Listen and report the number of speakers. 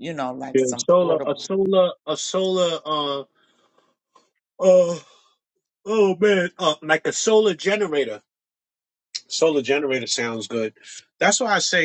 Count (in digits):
2